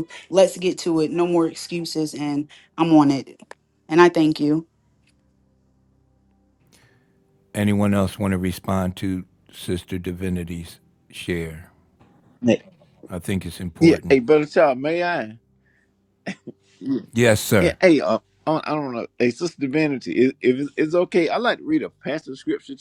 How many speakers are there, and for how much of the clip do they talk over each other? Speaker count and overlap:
3, about 2%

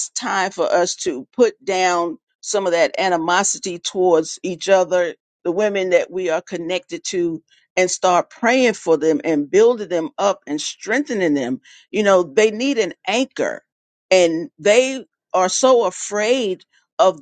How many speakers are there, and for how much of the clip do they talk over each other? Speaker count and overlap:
1, no overlap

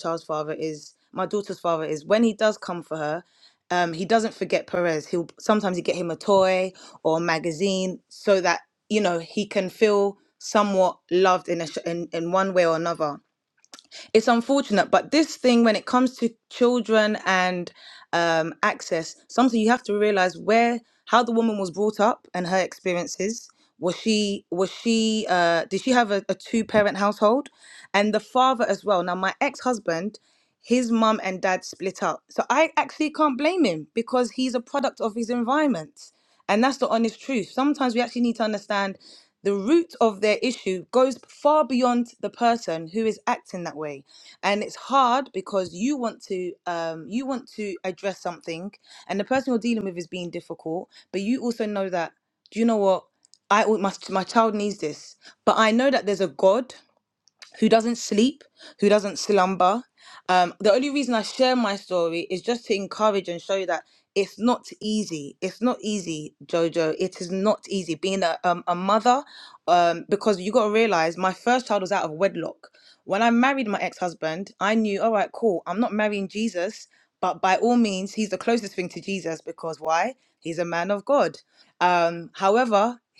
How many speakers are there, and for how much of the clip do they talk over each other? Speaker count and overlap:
1, no overlap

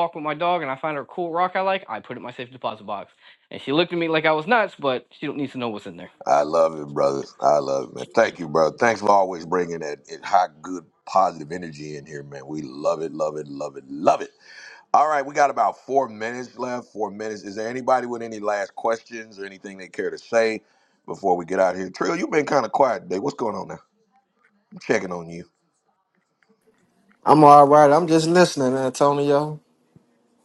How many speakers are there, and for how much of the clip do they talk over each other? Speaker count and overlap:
3, no overlap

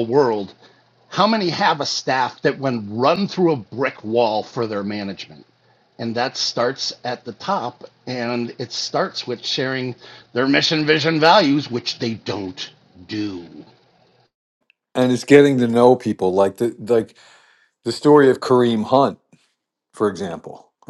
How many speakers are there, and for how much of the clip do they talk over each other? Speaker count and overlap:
2, no overlap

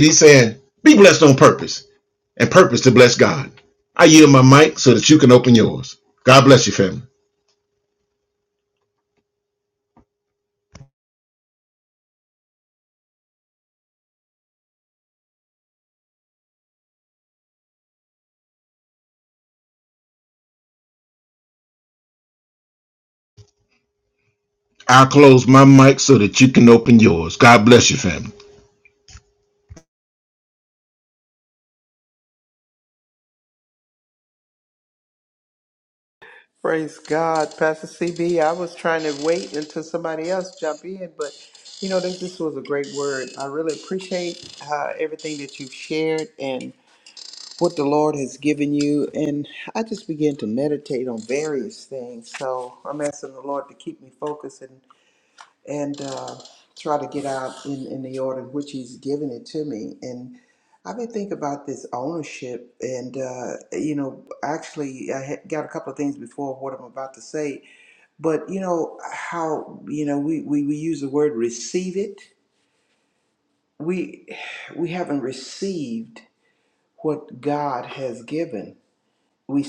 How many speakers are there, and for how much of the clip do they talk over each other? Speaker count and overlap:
2, no overlap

